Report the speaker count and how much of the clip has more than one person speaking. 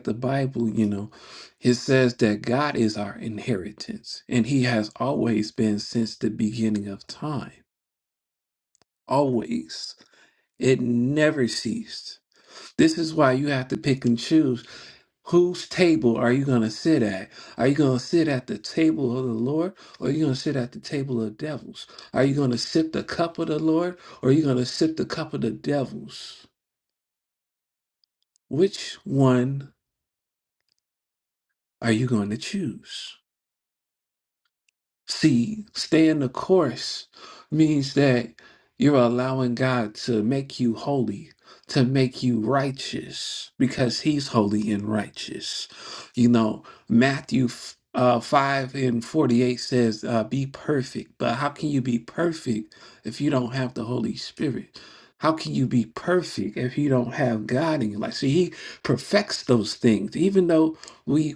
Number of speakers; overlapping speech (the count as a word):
one, no overlap